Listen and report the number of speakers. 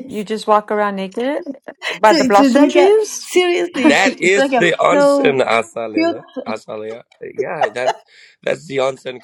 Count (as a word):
three